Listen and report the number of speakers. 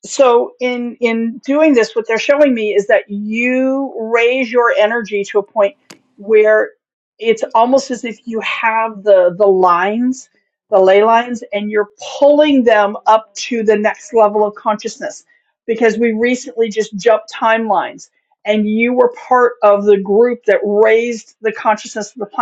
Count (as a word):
one